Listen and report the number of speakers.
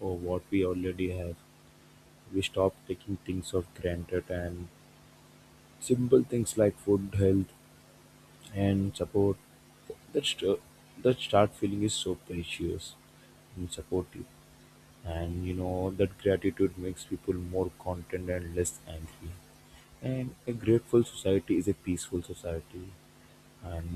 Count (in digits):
1